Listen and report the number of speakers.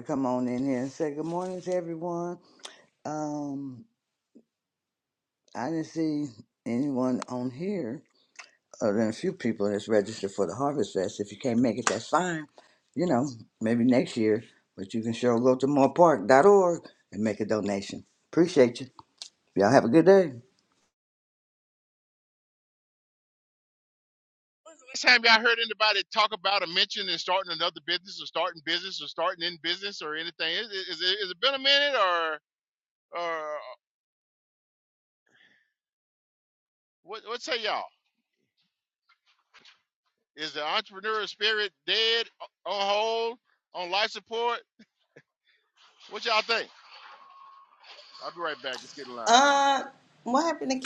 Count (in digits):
3